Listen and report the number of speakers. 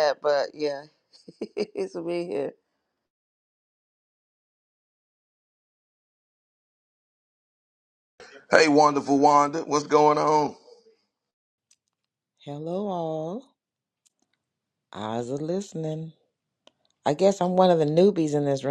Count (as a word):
three